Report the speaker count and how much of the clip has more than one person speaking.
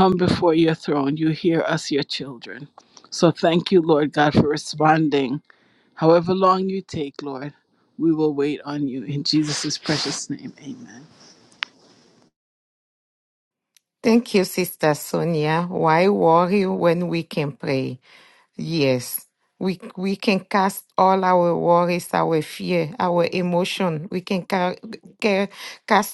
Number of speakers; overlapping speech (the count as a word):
two, no overlap